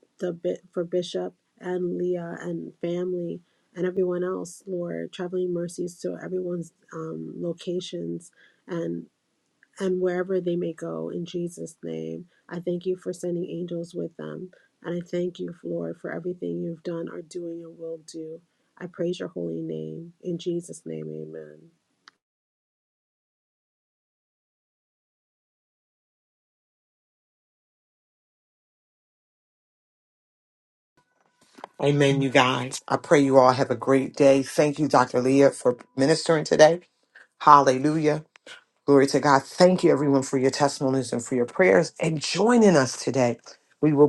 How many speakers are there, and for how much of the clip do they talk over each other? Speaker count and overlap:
two, no overlap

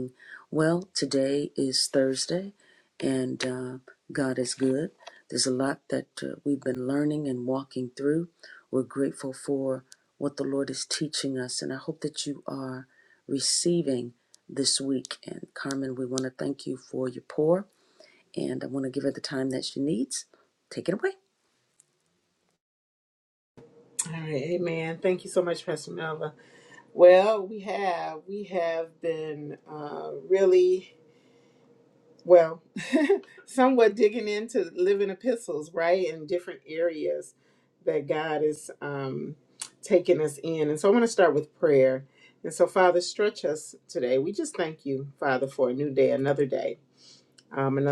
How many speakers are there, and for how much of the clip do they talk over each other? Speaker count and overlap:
two, no overlap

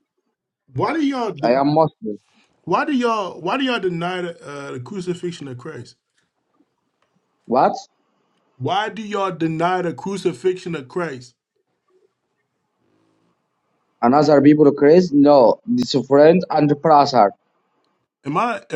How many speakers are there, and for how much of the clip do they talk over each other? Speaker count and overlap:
two, about 1%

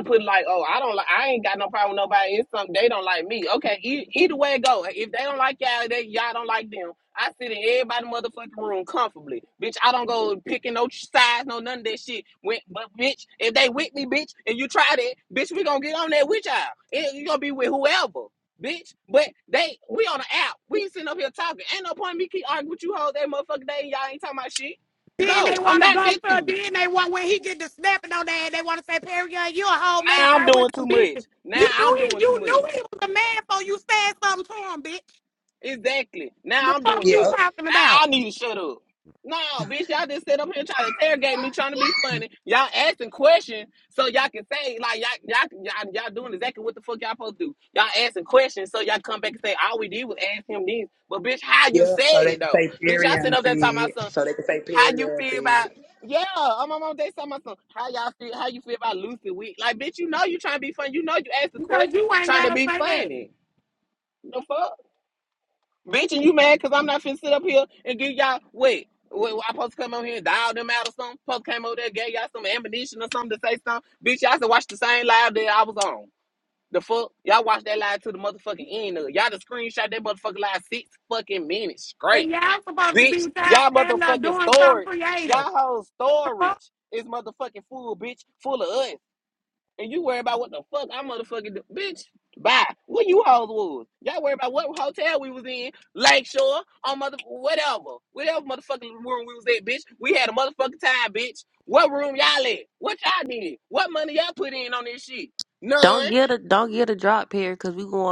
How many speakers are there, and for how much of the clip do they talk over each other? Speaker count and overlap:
four, about 12%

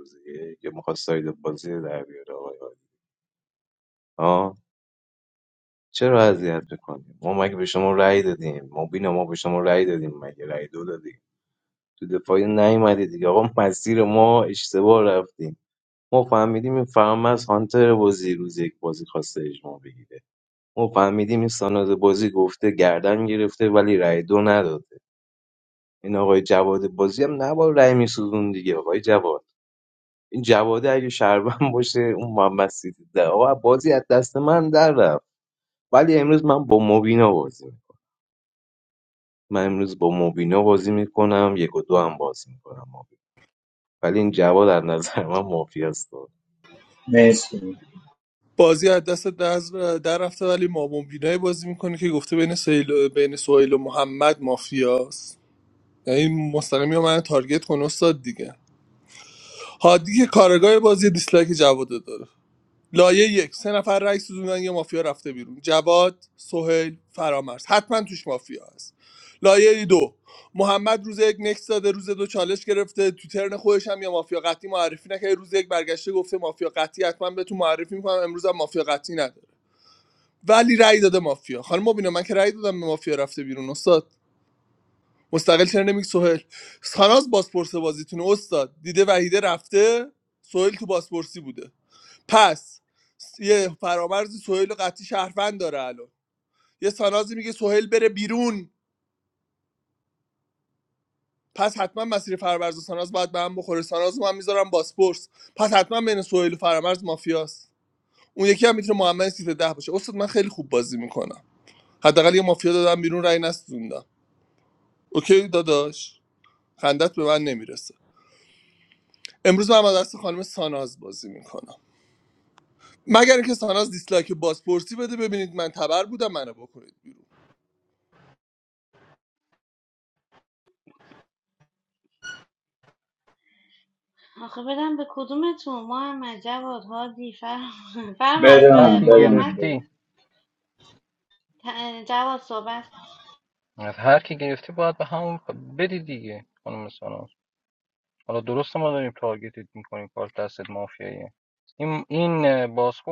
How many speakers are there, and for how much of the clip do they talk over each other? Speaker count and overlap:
five, about 1%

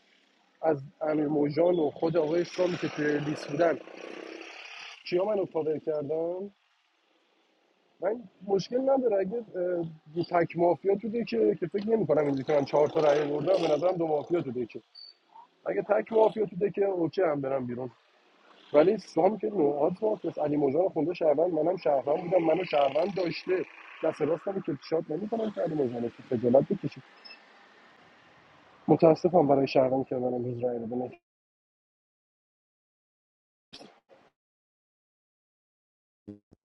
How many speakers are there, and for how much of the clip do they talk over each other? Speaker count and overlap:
one, no overlap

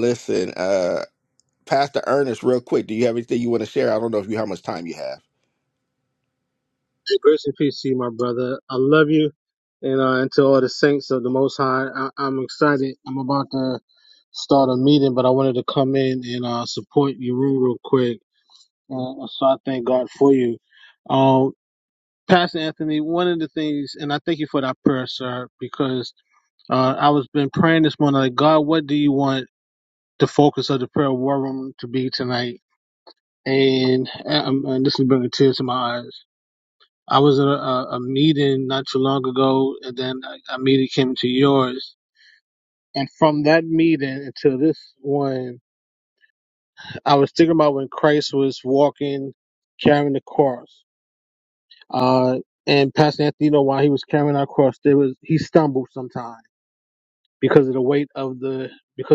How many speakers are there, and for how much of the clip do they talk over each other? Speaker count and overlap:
two, no overlap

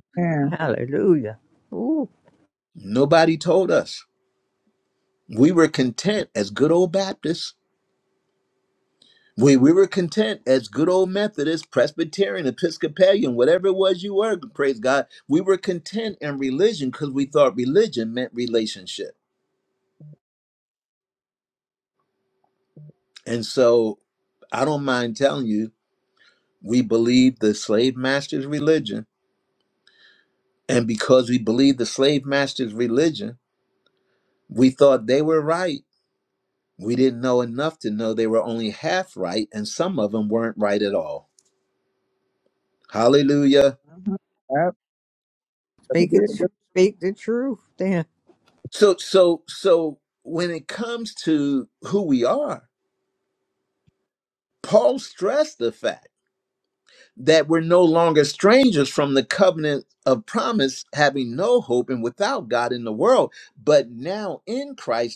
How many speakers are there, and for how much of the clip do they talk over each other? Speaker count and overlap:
three, about 1%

